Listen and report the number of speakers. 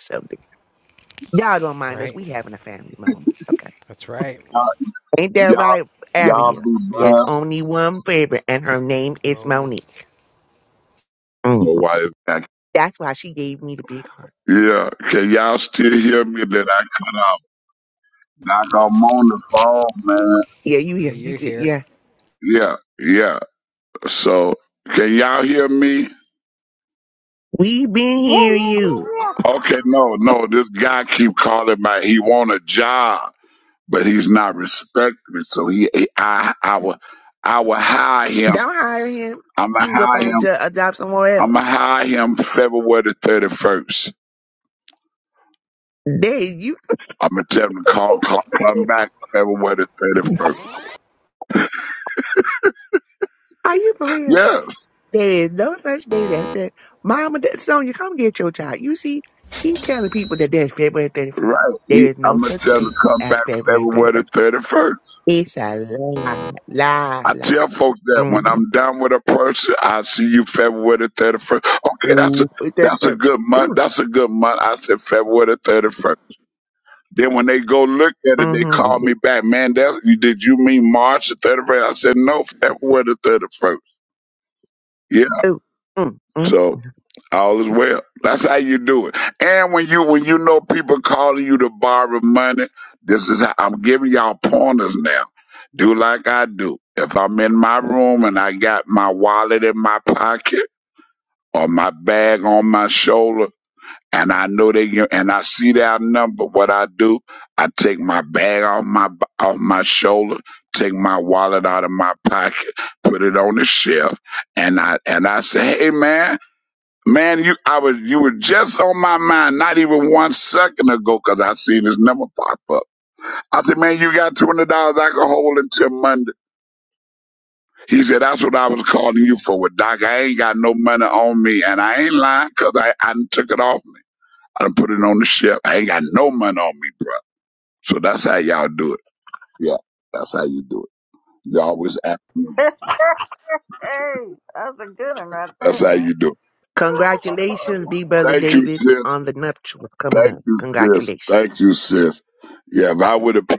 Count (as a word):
four